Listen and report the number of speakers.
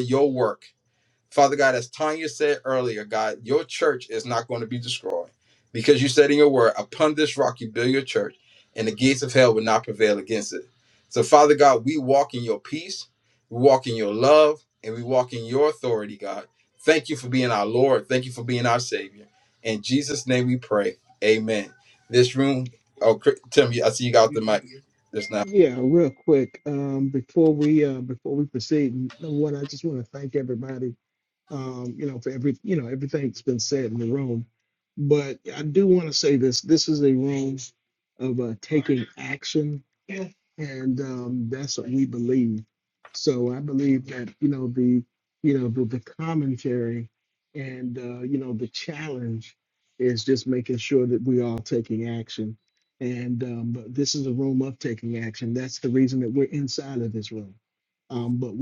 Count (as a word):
two